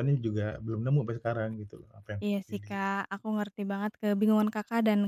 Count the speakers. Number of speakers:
two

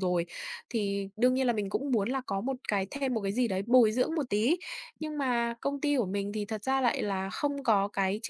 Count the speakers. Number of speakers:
one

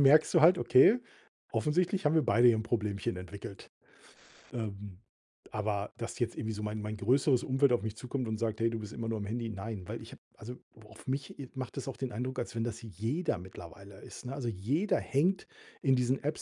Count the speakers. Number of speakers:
one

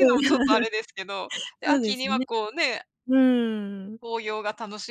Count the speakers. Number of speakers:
two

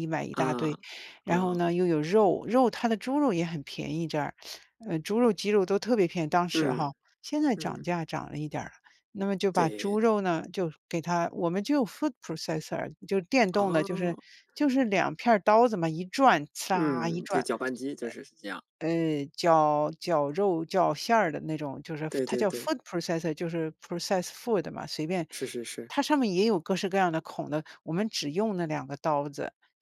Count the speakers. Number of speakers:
two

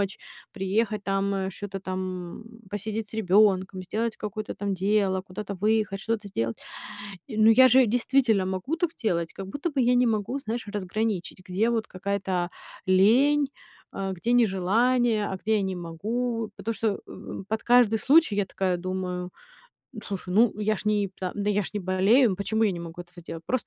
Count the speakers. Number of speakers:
one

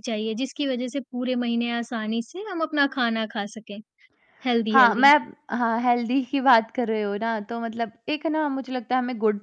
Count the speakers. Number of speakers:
two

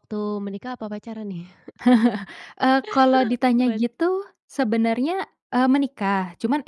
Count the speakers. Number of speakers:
two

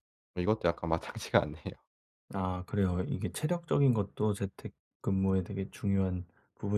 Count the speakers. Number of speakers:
two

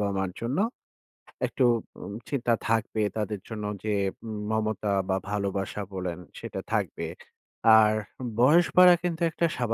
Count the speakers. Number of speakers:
one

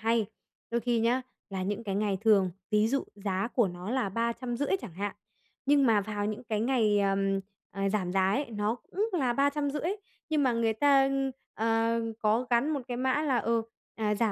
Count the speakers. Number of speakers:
one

